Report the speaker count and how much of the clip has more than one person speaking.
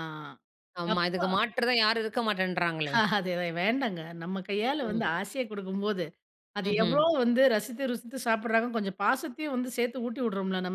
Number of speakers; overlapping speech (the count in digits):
2, about 11%